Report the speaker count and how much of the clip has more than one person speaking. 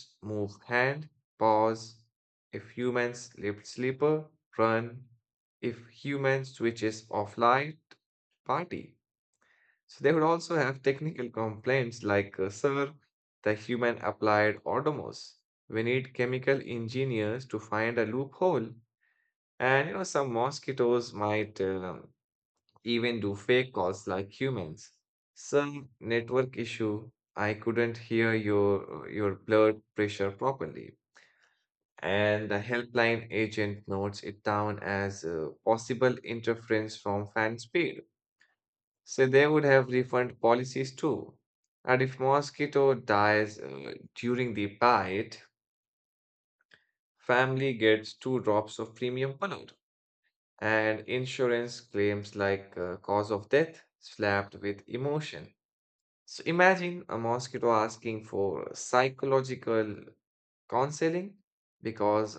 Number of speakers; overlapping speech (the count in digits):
1, no overlap